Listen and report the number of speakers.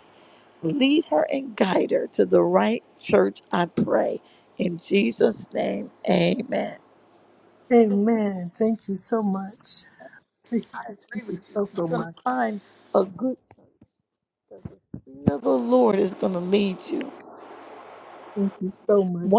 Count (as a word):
two